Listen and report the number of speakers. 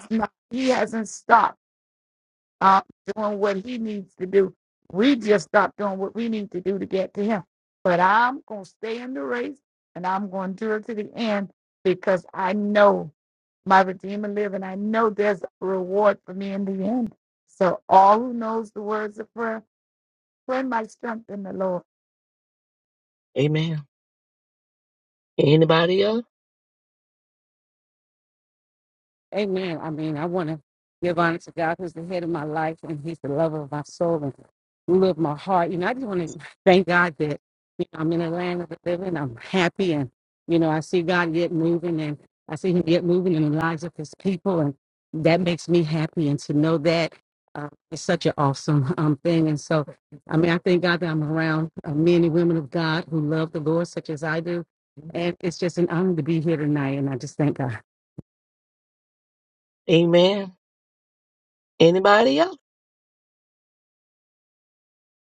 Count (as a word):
three